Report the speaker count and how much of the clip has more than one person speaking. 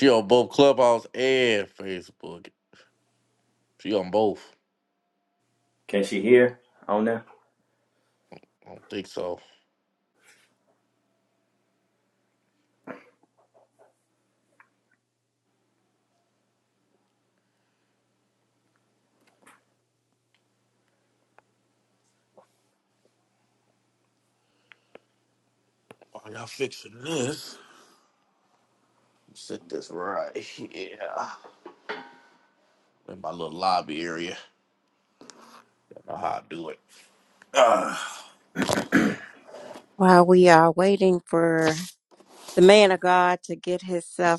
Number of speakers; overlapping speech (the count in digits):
3, no overlap